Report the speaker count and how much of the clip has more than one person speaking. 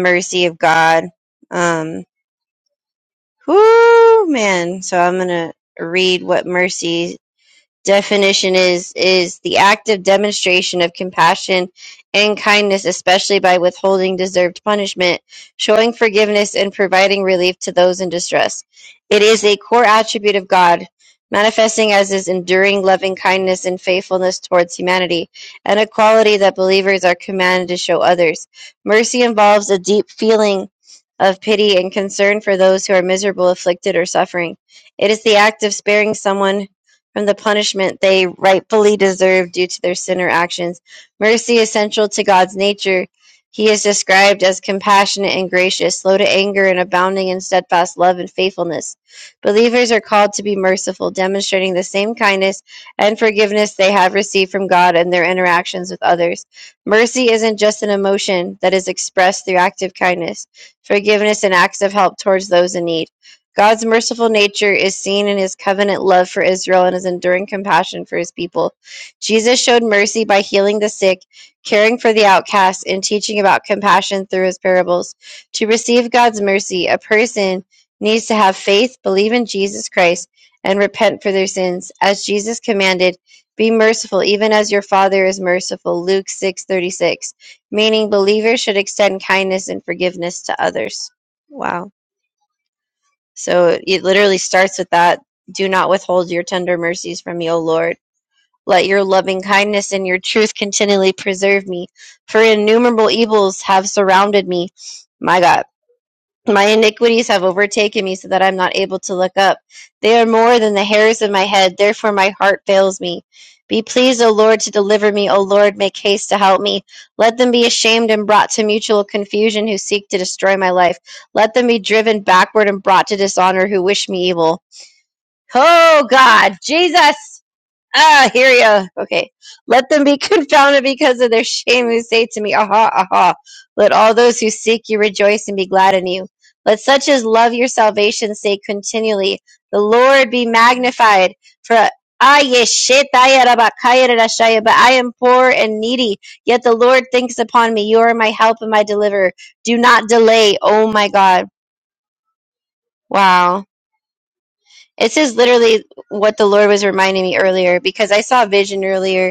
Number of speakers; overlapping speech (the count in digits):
1, no overlap